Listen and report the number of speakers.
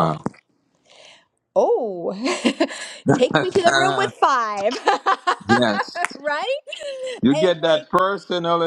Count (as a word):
two